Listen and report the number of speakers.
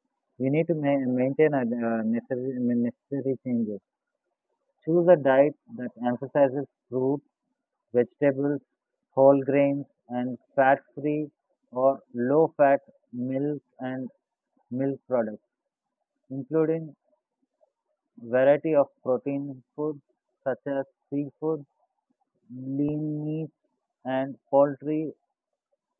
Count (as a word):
one